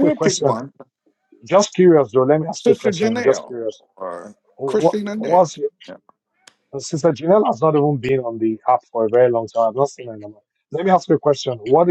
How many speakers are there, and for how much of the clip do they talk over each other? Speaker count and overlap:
2, about 19%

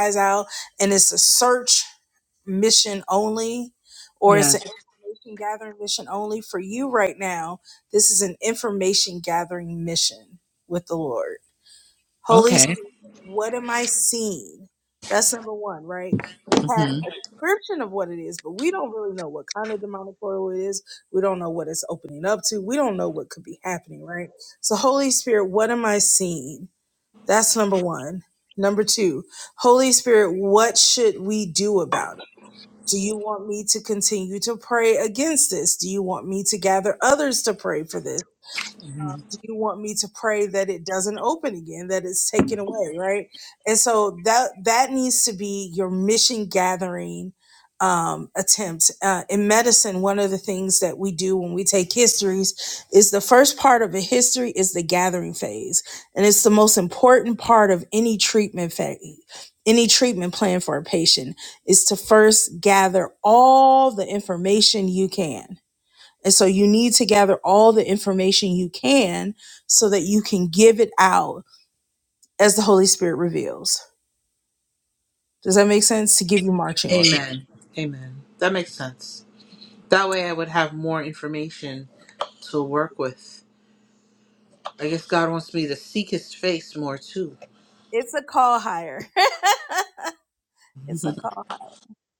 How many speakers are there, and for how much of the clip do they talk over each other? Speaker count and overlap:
2, about 2%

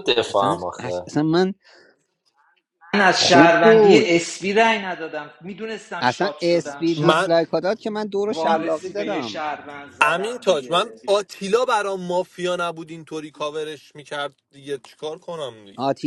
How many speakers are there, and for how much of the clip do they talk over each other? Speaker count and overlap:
4, about 29%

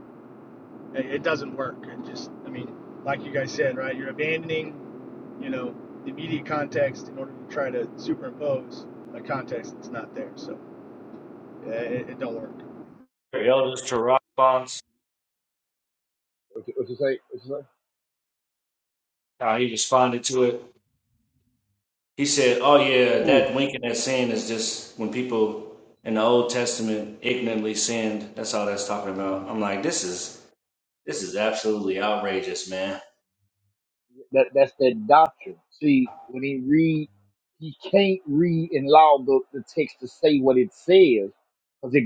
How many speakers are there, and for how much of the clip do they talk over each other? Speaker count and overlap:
3, about 1%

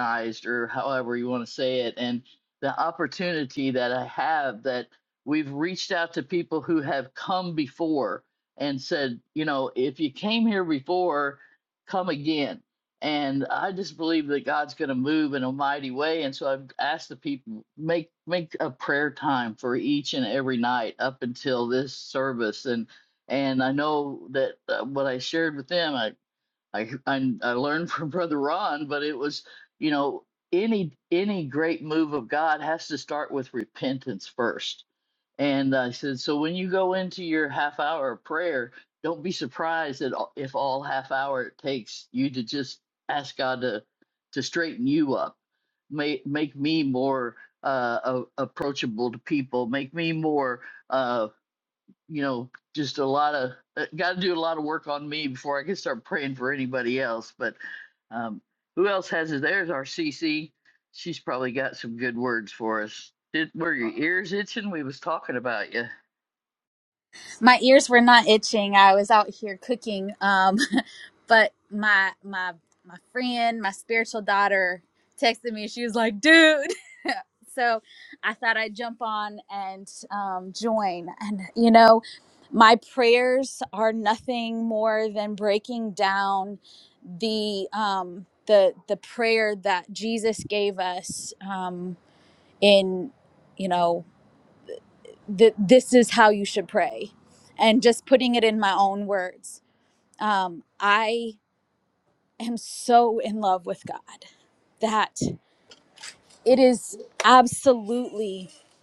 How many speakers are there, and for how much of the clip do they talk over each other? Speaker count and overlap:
2, no overlap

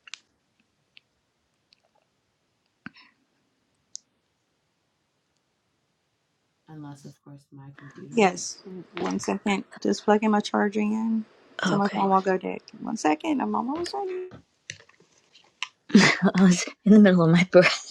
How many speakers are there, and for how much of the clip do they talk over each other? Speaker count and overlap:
3, about 5%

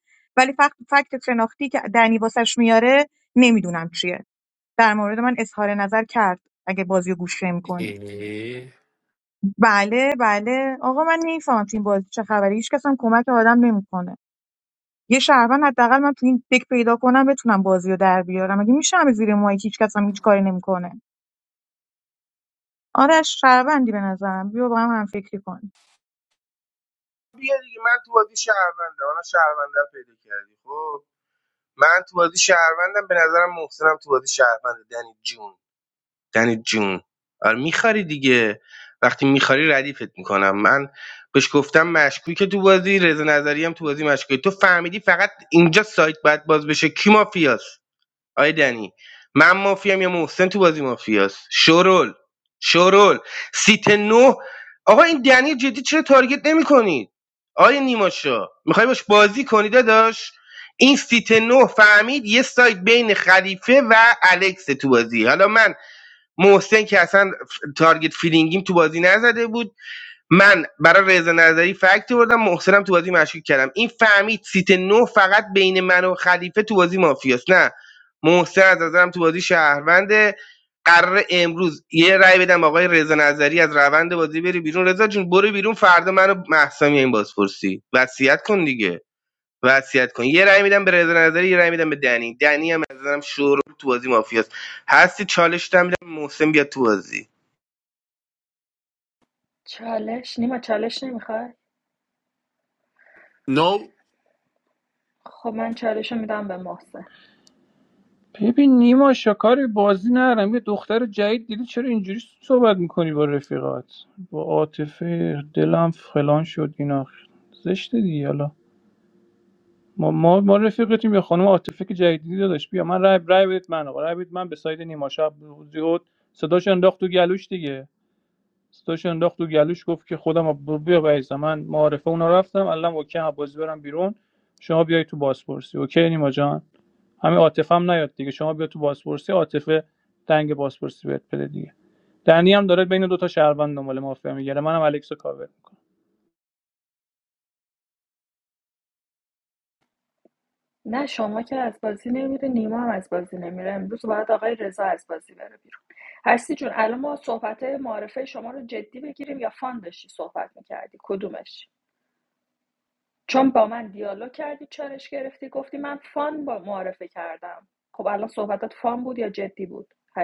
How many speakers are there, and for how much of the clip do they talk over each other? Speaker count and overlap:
5, under 1%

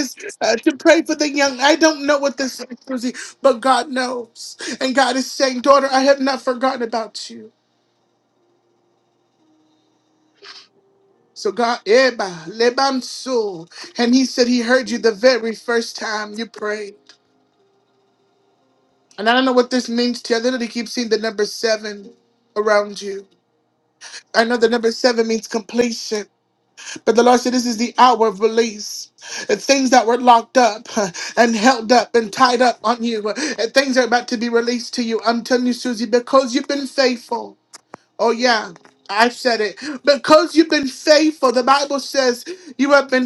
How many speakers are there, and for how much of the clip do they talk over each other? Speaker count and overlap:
1, no overlap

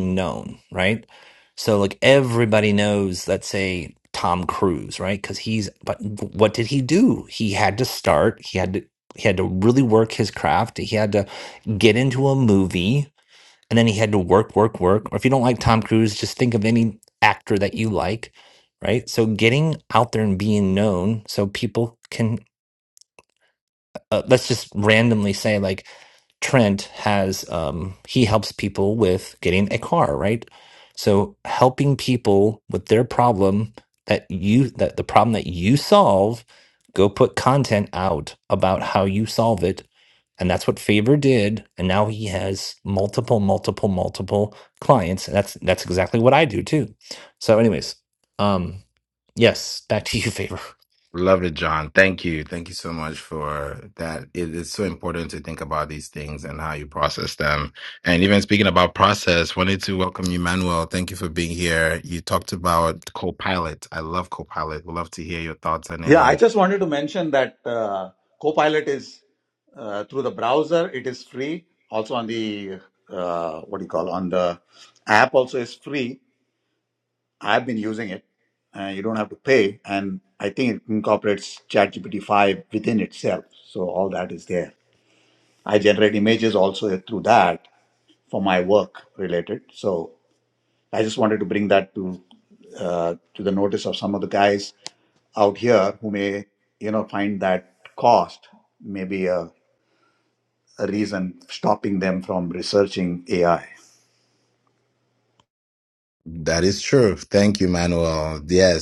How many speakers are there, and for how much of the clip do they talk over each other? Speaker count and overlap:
3, under 1%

